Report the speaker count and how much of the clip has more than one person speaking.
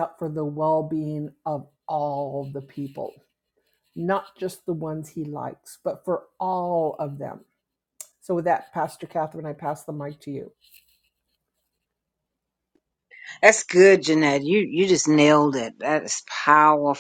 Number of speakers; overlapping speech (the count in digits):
2, no overlap